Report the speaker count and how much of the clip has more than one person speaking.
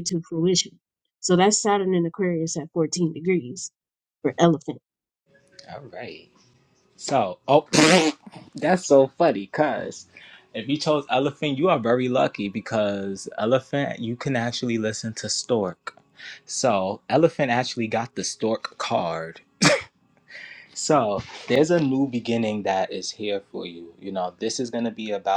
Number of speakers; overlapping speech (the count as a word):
two, no overlap